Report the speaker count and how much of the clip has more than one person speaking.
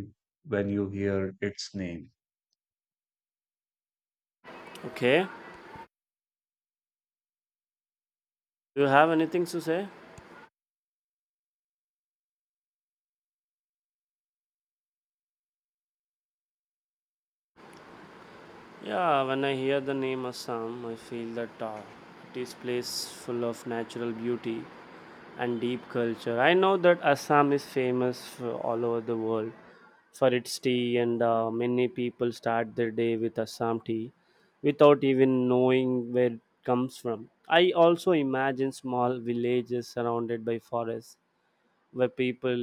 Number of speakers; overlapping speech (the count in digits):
2, no overlap